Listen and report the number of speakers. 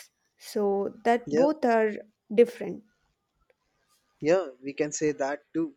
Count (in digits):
2